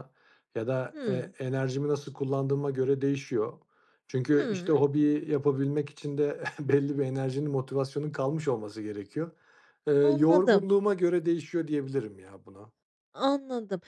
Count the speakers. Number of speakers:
2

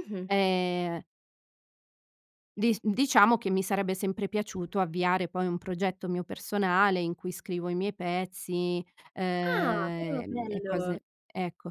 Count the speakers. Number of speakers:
2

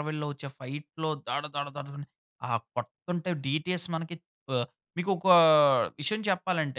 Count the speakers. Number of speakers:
1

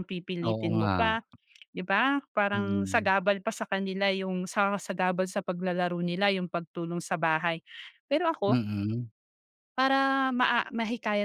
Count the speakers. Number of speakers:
2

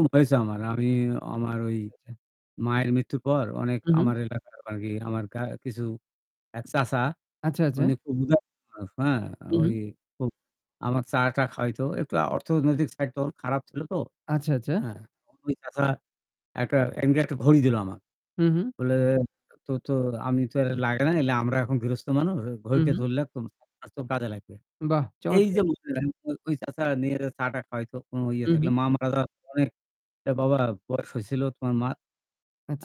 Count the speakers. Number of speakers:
2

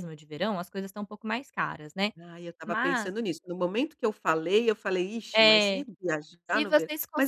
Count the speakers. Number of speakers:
2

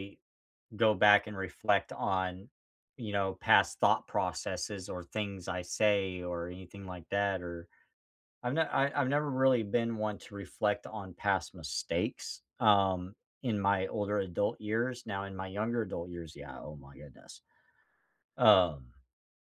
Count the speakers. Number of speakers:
1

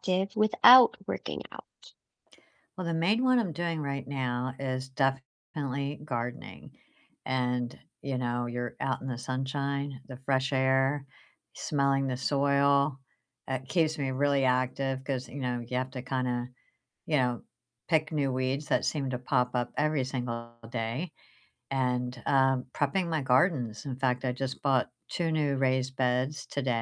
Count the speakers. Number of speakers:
2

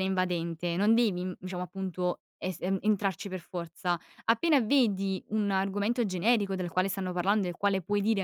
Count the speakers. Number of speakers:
1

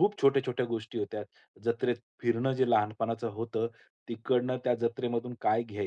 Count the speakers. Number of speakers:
1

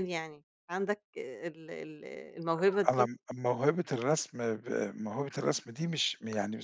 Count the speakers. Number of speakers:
2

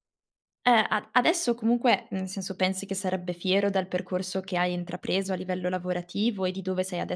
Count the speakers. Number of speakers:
1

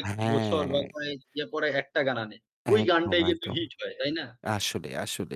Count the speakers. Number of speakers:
2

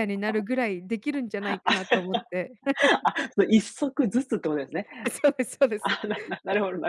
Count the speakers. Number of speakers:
2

